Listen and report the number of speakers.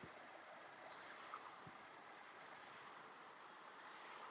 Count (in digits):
0